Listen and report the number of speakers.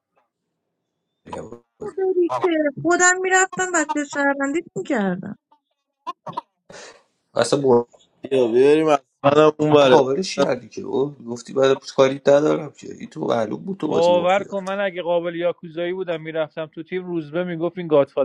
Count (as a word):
four